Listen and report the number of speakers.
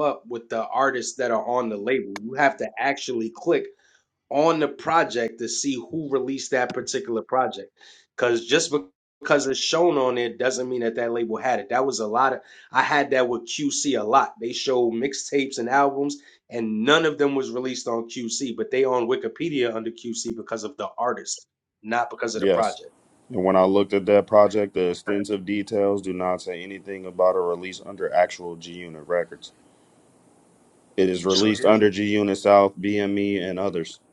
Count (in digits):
2